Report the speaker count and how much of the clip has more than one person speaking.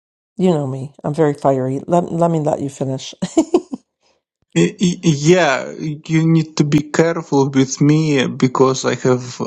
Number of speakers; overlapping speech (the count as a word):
two, no overlap